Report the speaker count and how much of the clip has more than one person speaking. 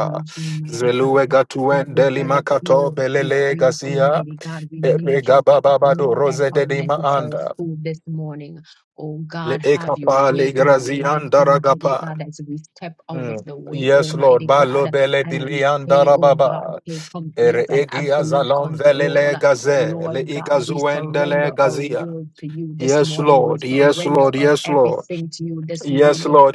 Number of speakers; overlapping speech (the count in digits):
2, about 74%